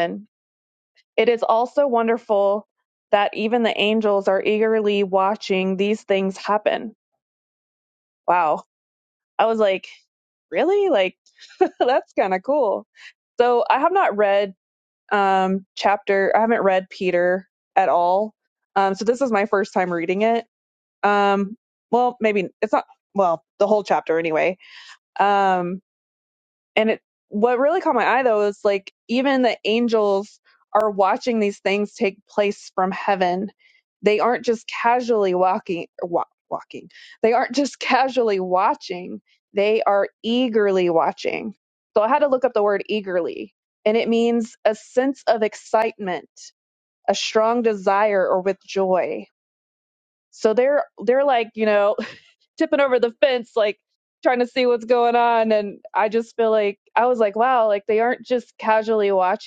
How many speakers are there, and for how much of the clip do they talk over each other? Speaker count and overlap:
1, no overlap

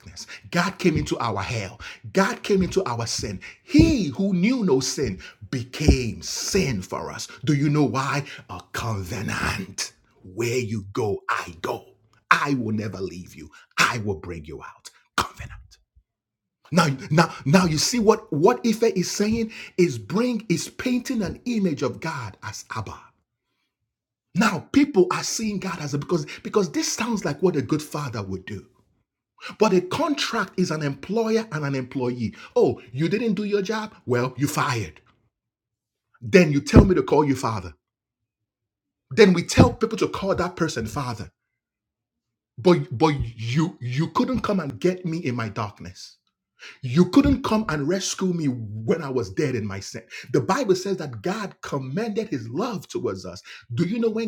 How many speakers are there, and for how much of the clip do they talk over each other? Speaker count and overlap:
1, no overlap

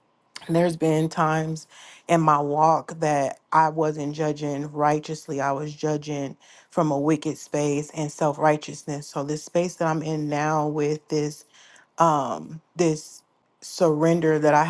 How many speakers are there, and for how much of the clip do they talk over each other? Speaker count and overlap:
1, no overlap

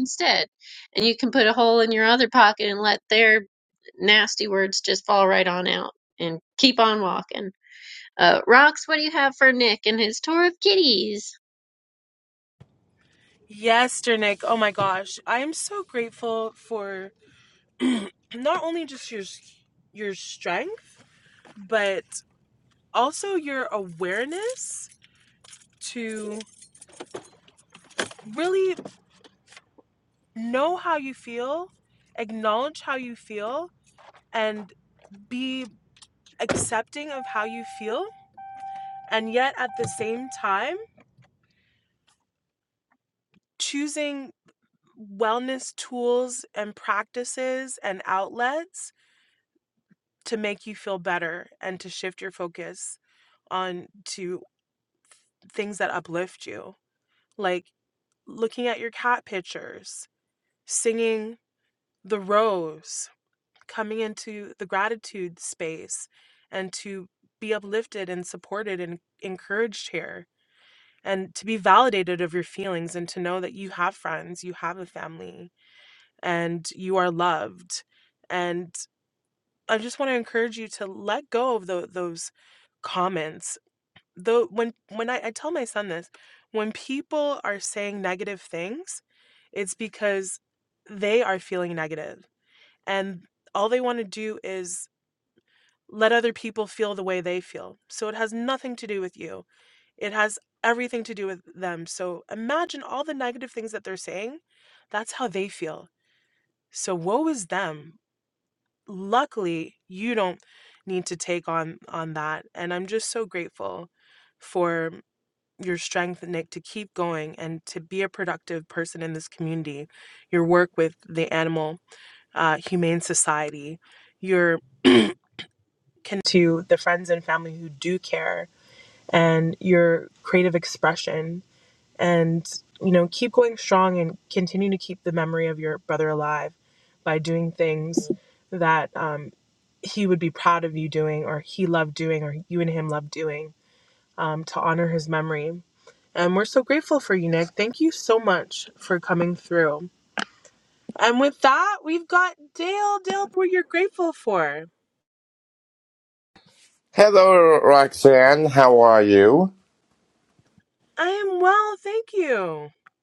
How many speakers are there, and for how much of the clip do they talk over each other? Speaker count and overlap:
3, no overlap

